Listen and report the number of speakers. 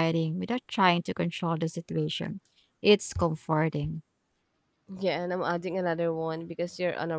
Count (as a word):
two